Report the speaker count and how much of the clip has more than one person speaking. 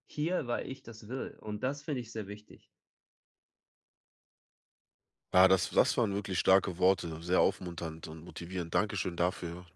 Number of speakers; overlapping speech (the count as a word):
two, no overlap